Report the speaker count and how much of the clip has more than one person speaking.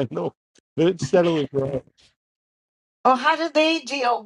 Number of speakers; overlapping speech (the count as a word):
two, no overlap